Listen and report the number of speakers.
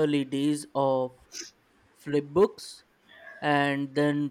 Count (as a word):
one